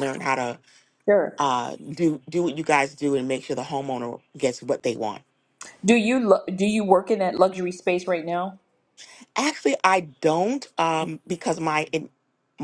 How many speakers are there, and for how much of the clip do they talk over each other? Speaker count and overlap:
2, no overlap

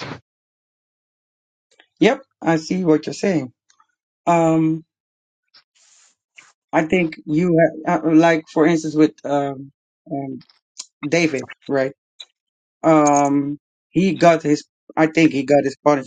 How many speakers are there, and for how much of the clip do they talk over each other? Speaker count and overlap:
1, no overlap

